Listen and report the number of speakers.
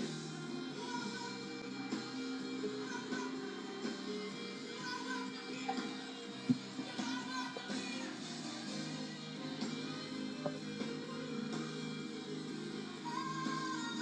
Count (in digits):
0